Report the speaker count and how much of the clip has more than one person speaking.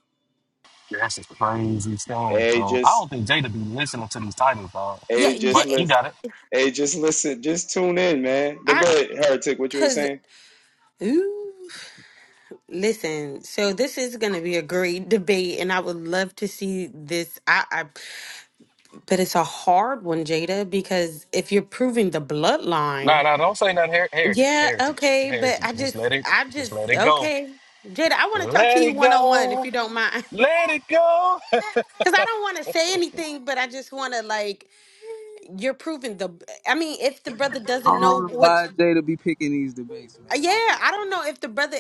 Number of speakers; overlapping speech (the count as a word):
four, about 16%